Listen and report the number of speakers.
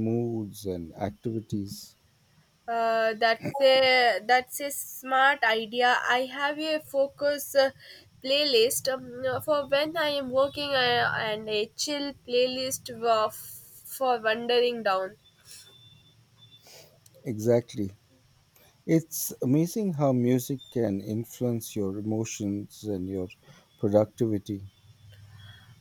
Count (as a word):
two